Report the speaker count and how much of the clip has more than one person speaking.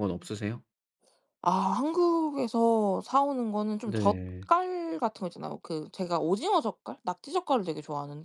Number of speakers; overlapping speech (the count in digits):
2, about 7%